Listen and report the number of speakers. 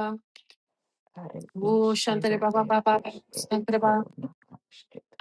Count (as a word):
two